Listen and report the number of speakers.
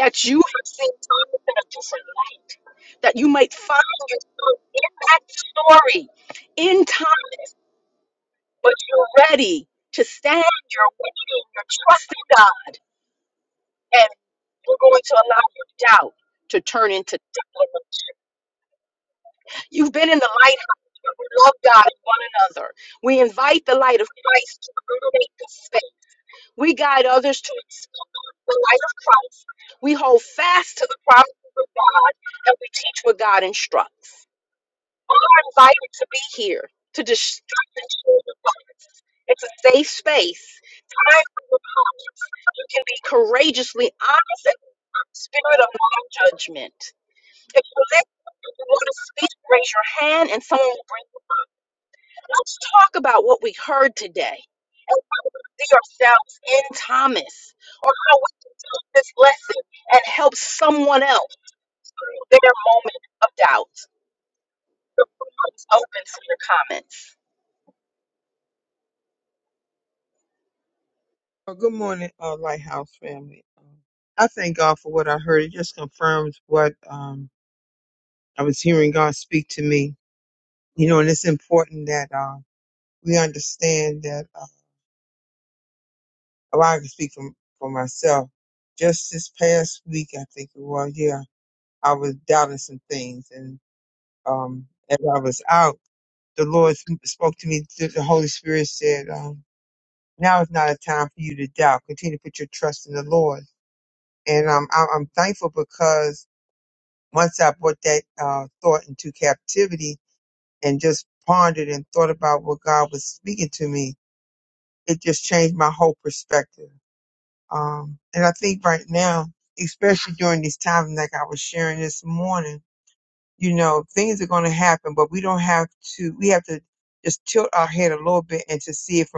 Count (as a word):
two